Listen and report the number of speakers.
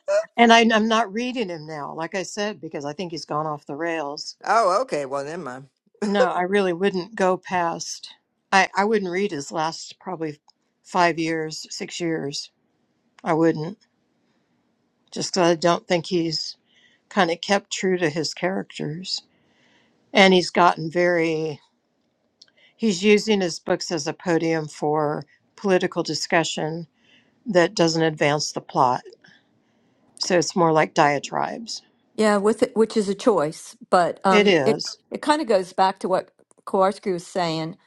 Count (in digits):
3